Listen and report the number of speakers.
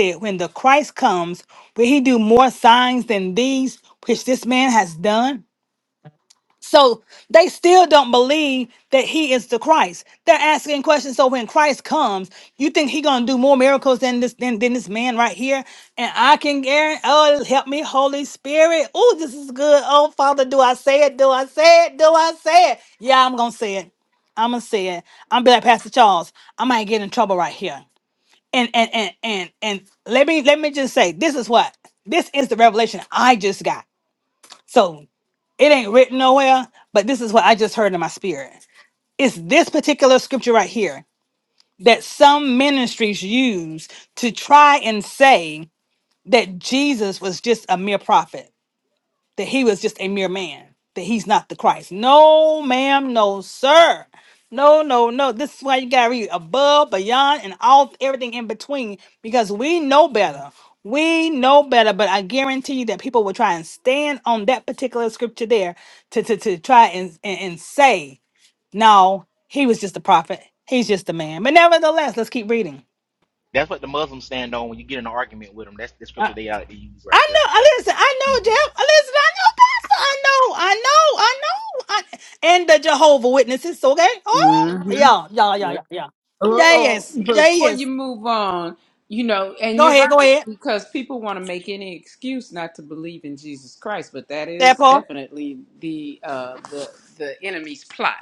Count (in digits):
3